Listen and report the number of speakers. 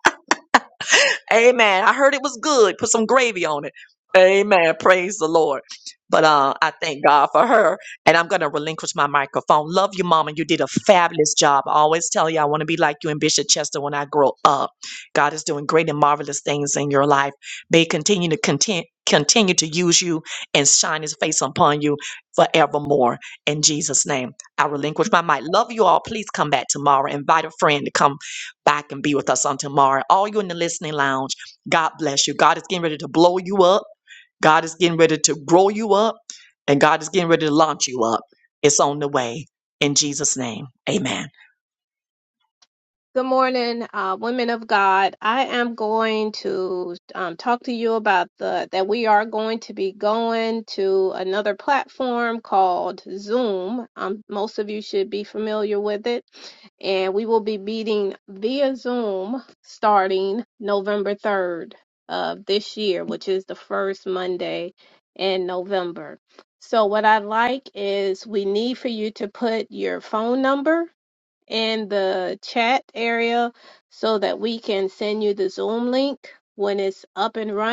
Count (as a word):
two